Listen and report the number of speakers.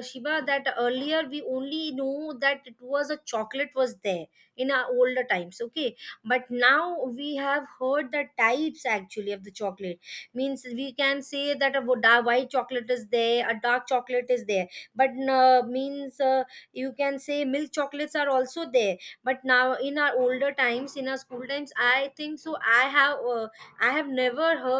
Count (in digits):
1